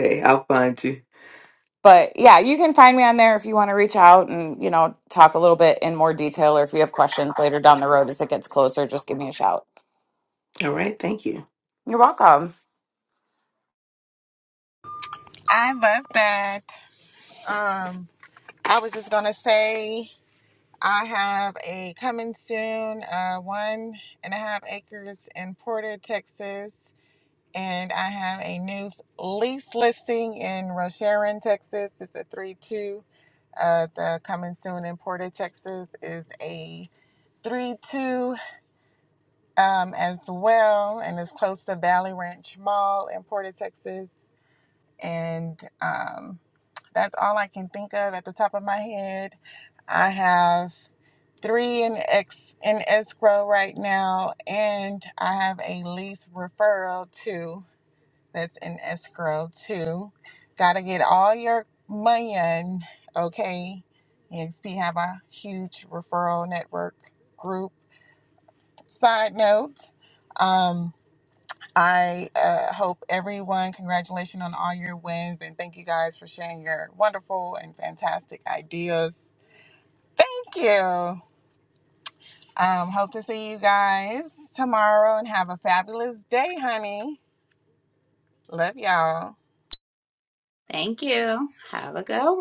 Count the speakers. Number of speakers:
4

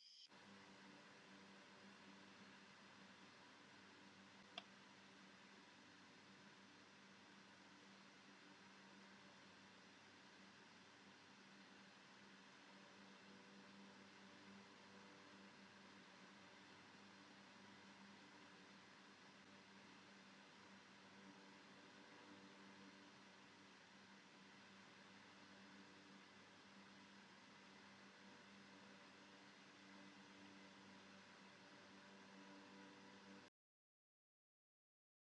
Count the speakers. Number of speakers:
0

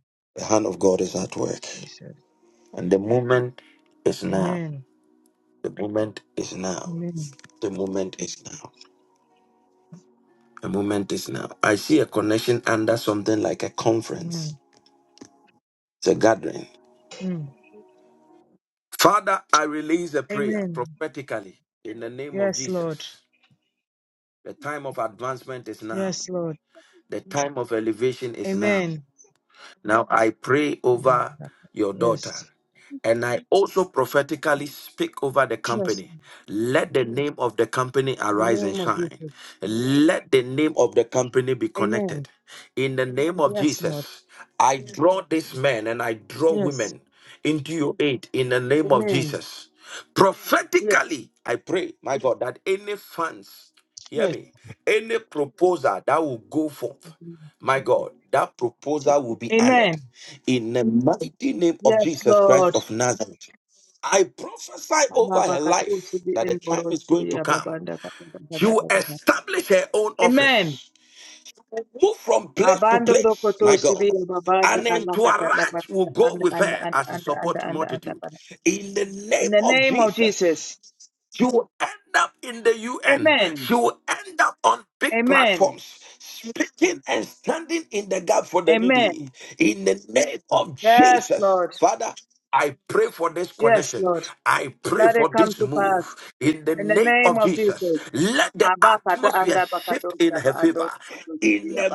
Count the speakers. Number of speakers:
2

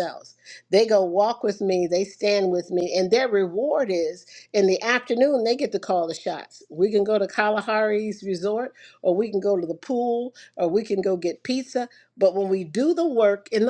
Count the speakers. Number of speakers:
1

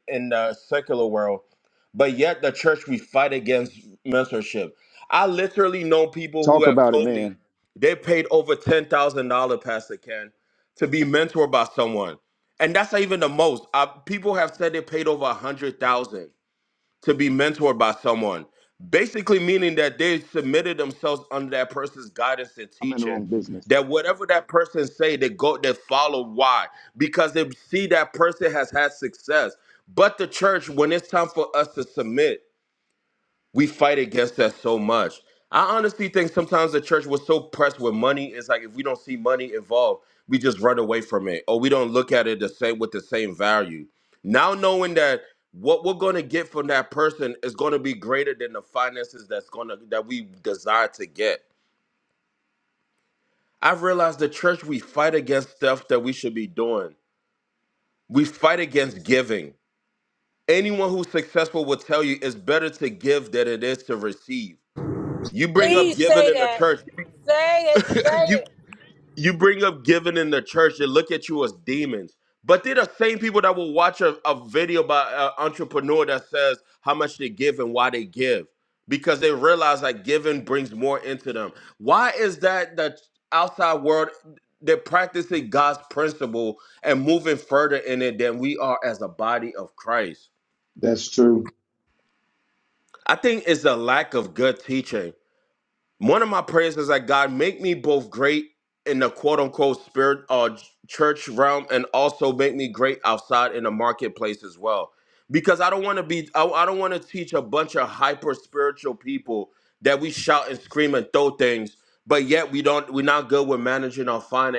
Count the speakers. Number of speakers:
3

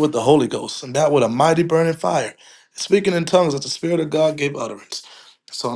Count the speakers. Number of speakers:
1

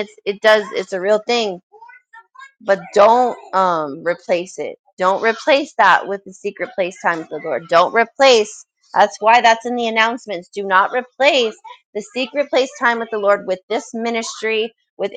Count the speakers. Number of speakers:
1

